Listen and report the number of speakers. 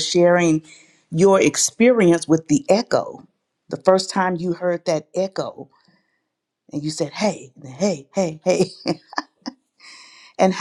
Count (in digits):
1